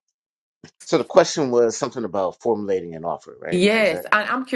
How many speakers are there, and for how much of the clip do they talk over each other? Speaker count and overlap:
two, about 12%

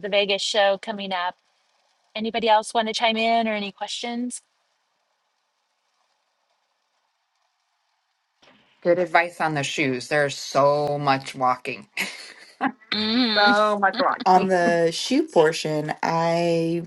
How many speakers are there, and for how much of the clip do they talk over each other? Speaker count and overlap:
three, about 3%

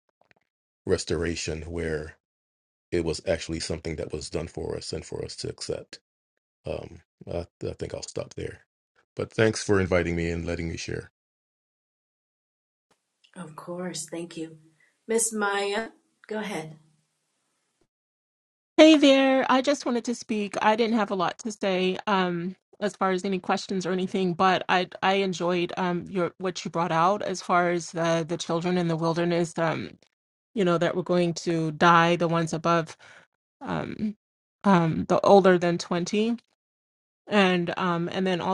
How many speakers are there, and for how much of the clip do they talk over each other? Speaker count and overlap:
three, no overlap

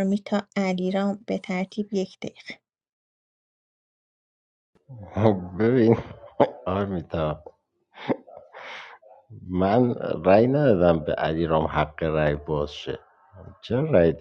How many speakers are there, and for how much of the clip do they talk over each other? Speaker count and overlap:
two, no overlap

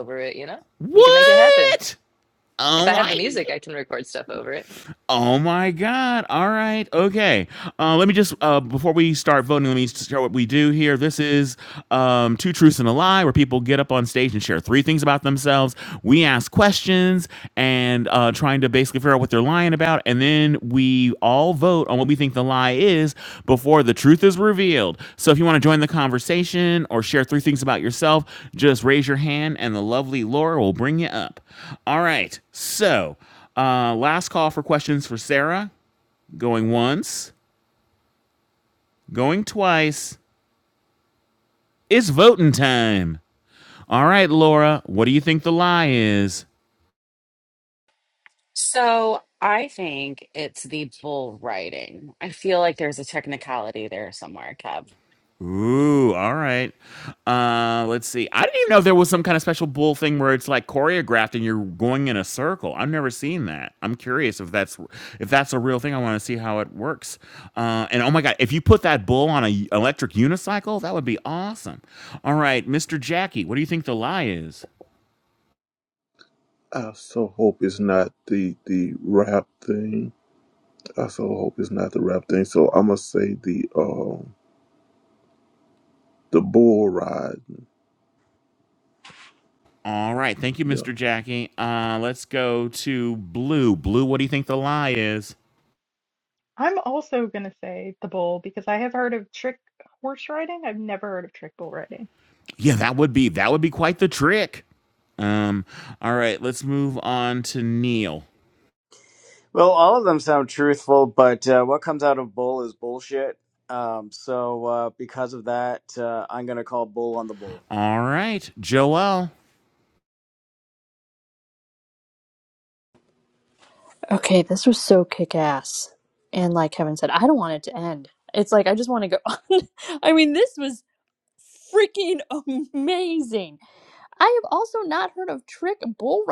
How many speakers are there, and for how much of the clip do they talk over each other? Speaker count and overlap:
seven, about 1%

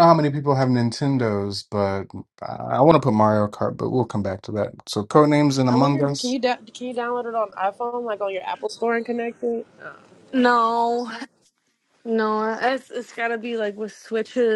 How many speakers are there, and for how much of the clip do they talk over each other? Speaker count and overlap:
three, about 4%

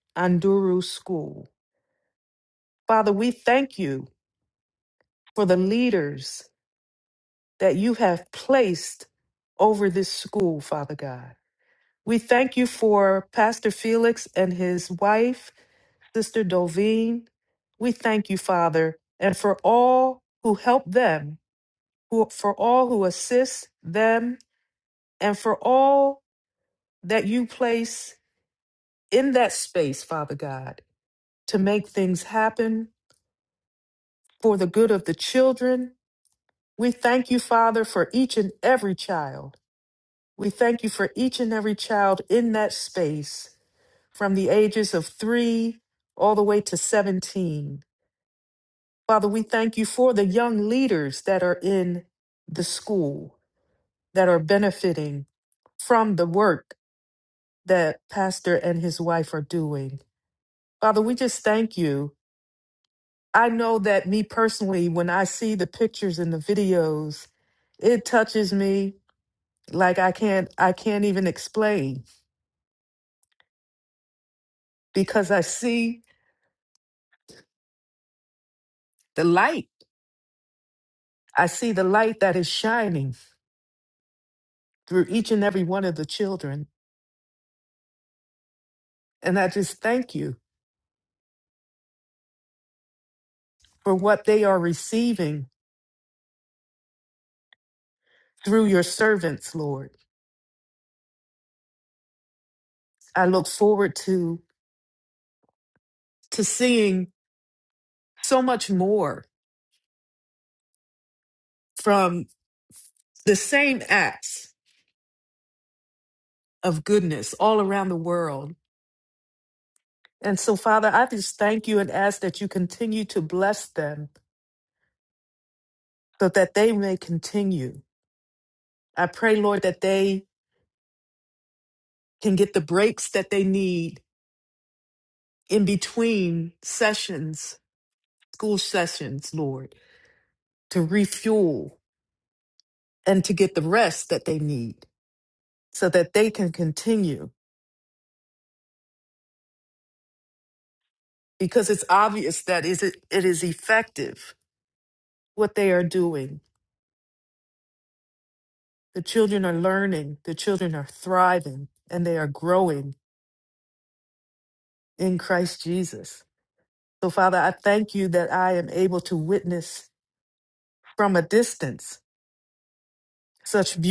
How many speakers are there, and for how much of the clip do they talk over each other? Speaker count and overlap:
one, no overlap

